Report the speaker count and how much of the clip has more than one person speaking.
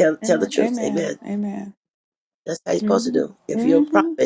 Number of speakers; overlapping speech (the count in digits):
2, about 54%